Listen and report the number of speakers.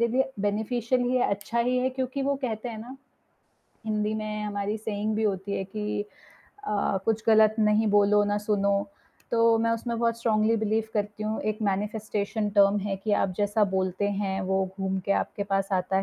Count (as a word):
one